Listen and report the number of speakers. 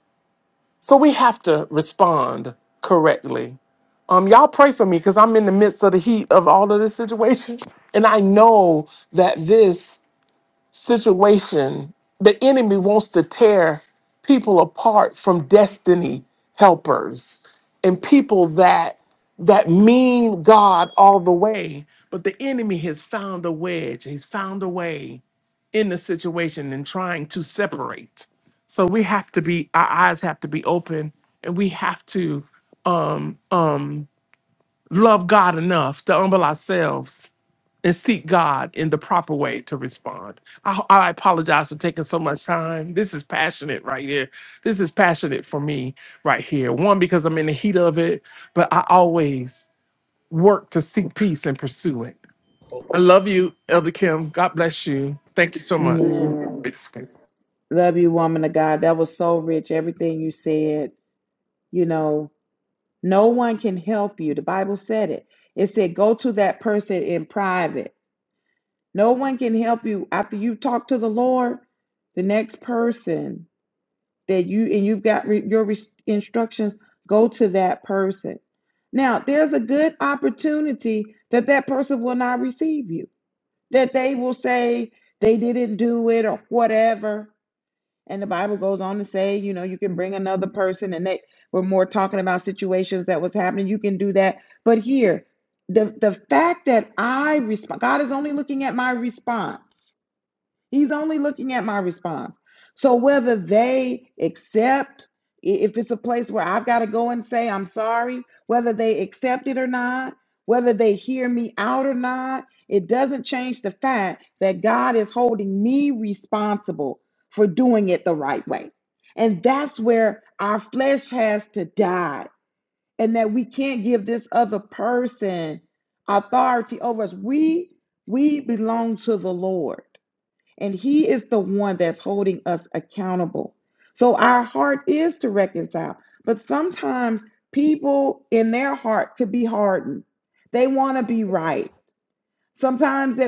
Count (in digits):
2